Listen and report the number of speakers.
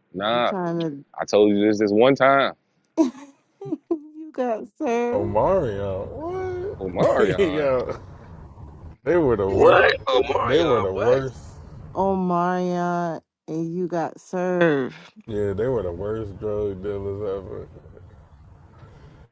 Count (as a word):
four